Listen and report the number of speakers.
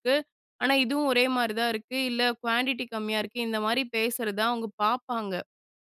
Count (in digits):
1